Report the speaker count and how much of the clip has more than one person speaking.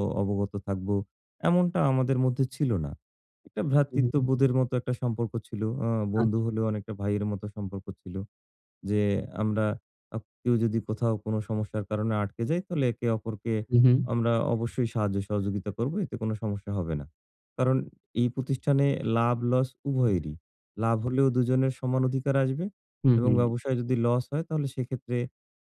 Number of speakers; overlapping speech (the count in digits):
2, about 3%